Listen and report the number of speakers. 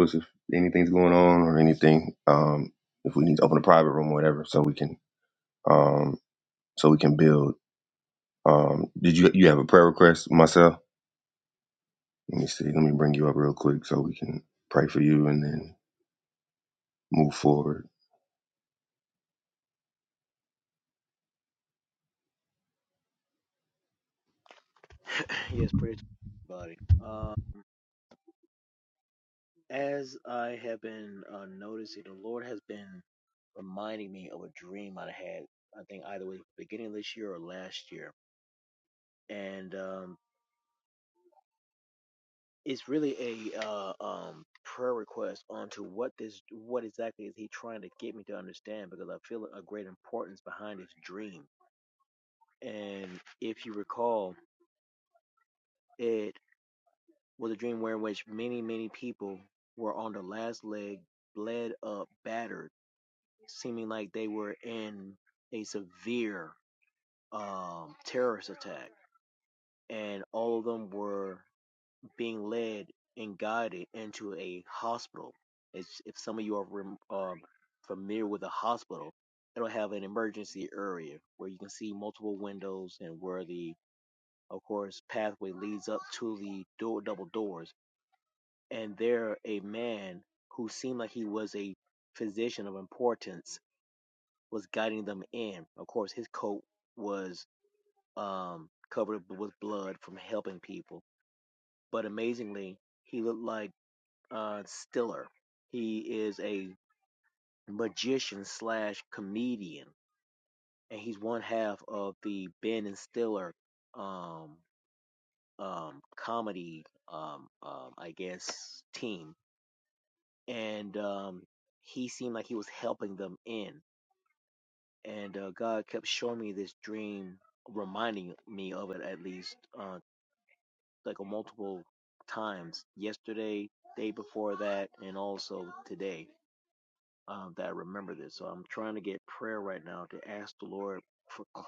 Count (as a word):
two